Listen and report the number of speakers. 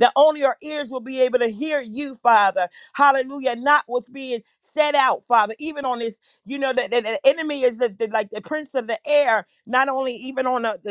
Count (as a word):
one